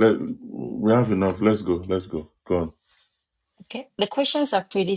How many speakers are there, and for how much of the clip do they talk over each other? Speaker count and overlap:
2, no overlap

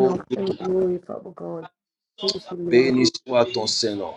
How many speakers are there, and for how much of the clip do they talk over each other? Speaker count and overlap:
2, about 19%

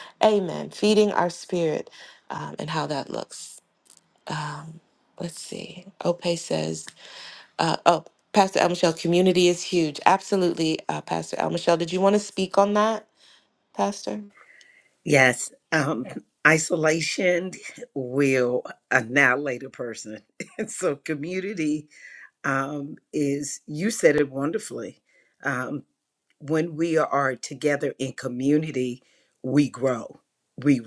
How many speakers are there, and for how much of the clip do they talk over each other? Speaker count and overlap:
2, no overlap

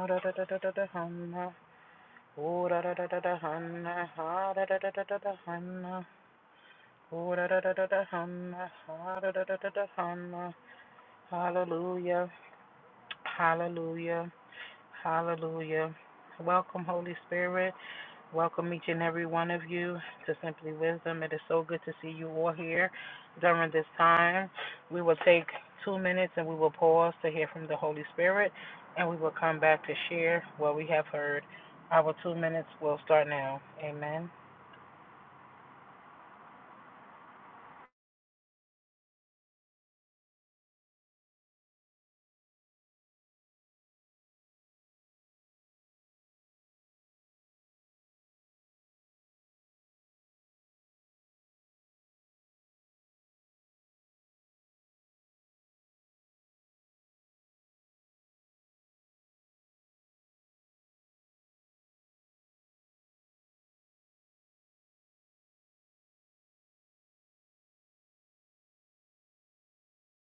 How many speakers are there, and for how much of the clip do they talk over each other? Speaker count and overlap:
1, no overlap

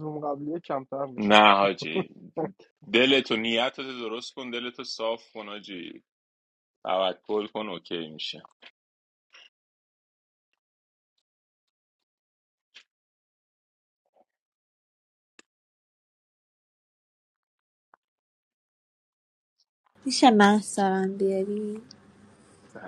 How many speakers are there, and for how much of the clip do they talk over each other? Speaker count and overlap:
3, about 1%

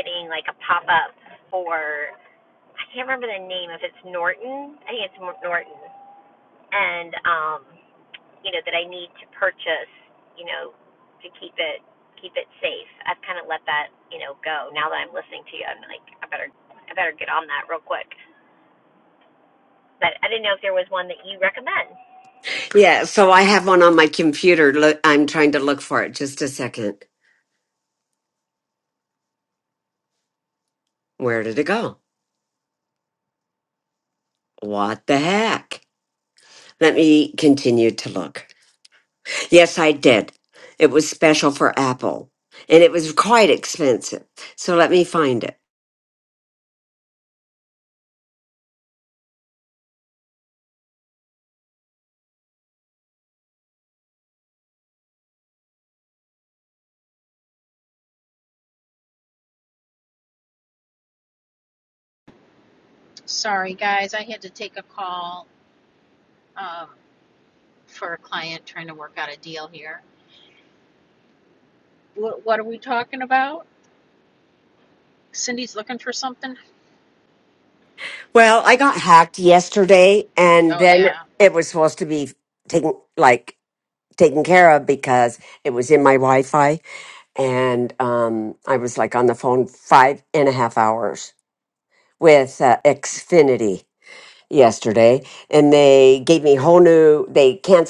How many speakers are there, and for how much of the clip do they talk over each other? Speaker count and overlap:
3, about 1%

